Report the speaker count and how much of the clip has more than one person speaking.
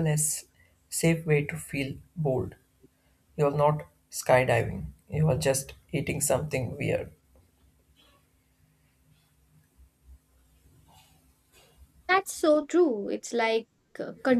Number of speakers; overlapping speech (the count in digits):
2, no overlap